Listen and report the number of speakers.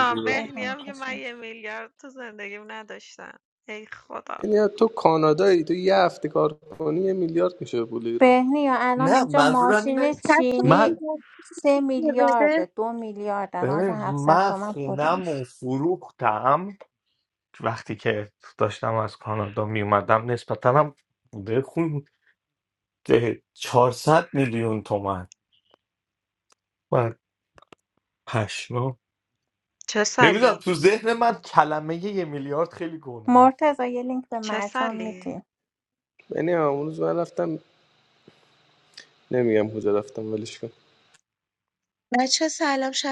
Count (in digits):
5